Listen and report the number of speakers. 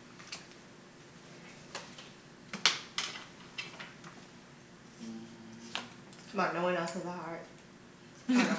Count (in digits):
1